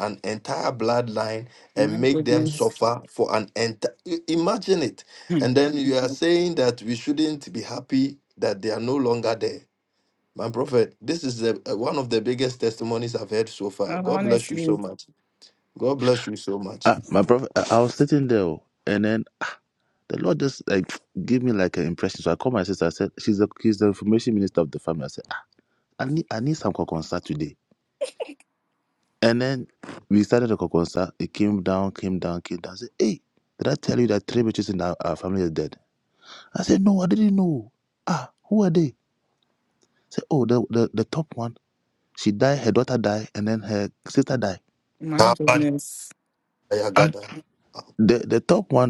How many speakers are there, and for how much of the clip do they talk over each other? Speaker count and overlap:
3, about 5%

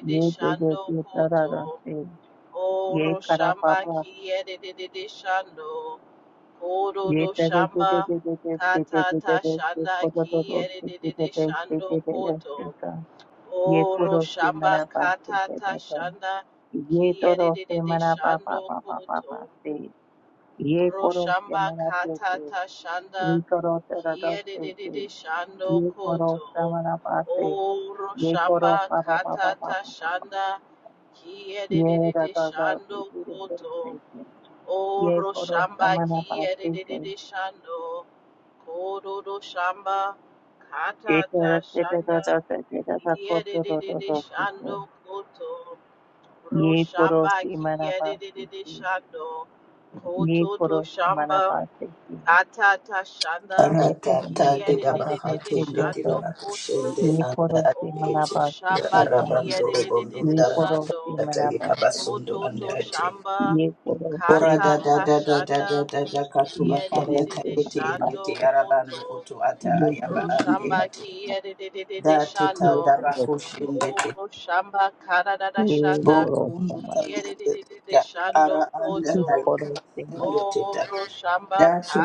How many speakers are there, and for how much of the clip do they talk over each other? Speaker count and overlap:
3, about 61%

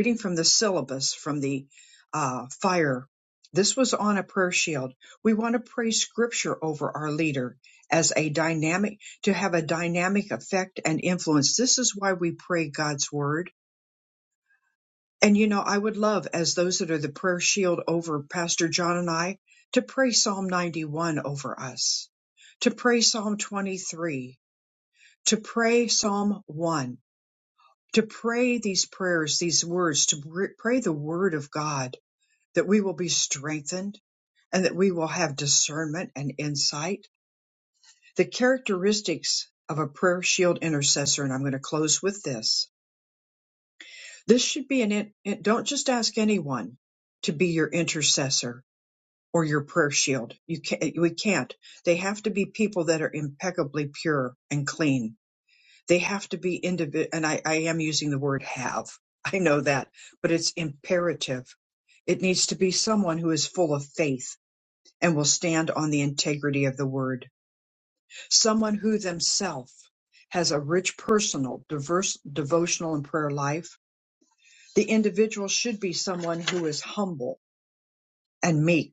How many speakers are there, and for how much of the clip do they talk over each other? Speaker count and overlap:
1, no overlap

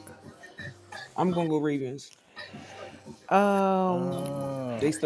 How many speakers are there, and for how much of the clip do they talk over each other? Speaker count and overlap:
3, about 14%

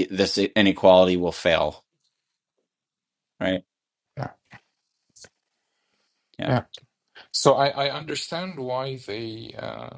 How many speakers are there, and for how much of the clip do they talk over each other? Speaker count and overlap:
2, about 1%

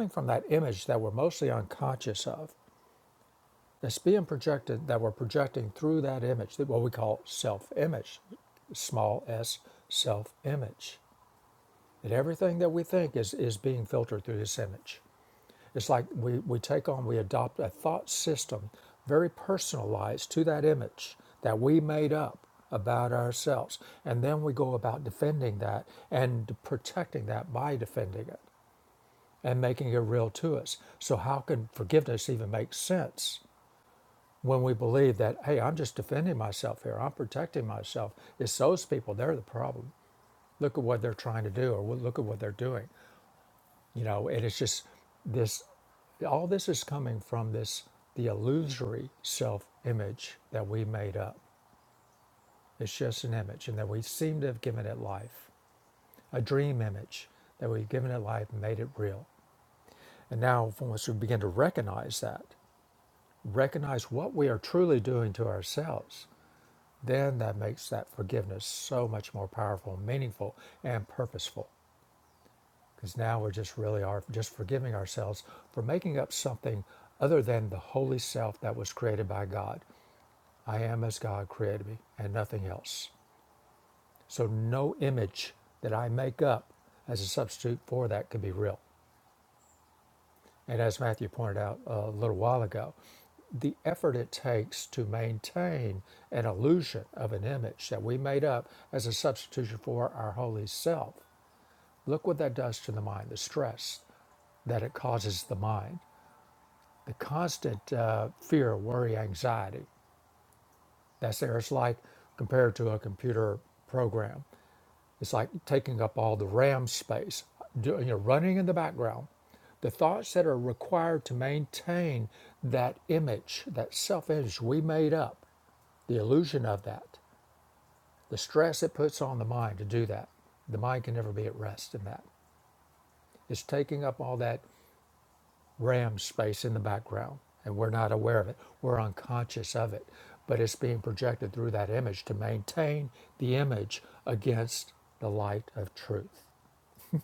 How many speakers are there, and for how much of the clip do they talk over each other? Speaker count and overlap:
1, no overlap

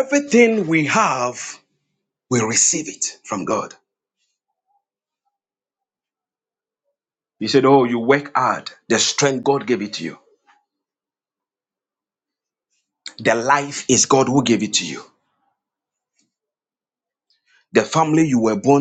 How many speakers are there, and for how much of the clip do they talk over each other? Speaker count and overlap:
1, no overlap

